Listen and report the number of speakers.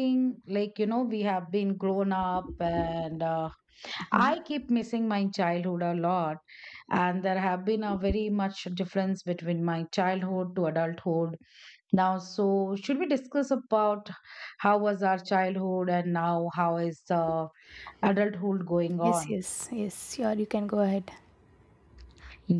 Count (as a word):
two